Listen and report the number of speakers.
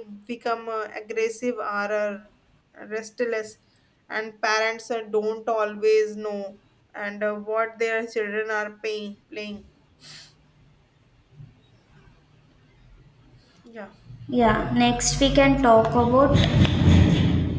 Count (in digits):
2